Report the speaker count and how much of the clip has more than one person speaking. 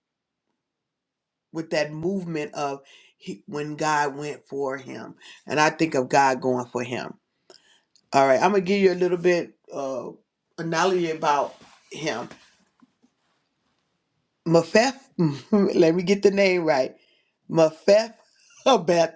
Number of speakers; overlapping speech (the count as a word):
one, no overlap